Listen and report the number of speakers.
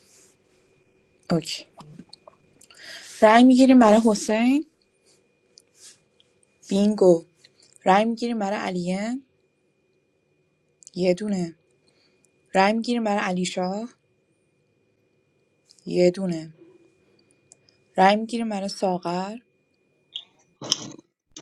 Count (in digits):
1